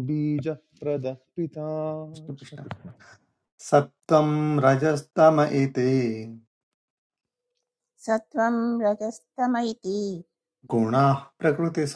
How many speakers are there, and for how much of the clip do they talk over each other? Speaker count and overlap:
3, about 3%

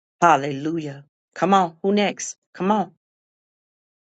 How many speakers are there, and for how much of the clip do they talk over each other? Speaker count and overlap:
1, no overlap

